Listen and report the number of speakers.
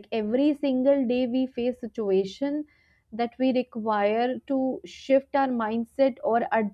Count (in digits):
1